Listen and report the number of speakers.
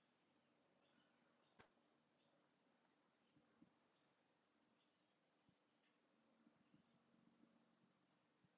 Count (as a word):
zero